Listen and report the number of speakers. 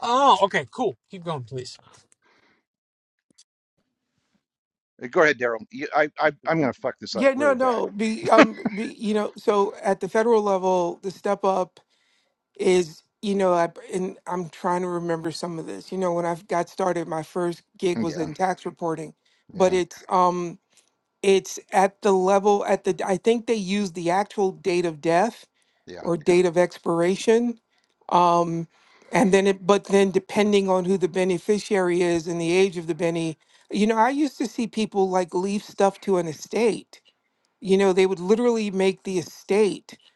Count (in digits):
3